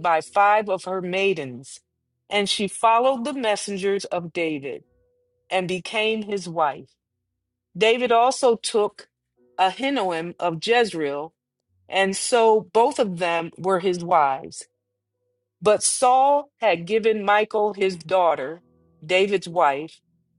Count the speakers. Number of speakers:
1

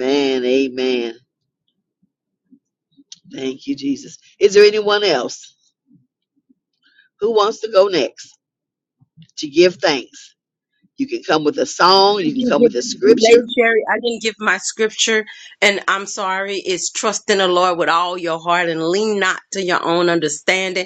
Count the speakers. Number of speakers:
2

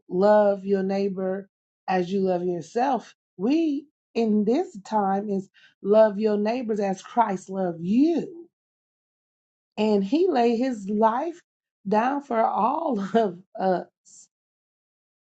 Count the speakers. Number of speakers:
1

